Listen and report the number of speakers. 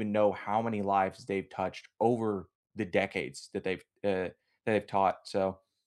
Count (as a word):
one